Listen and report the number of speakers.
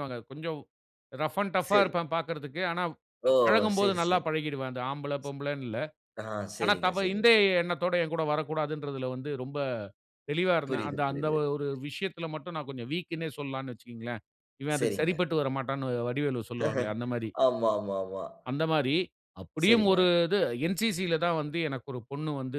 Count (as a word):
two